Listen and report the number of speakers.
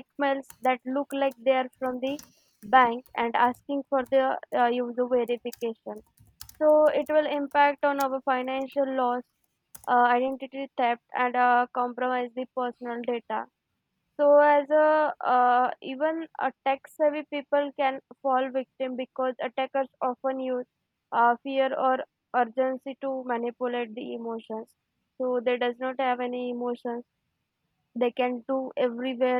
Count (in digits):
1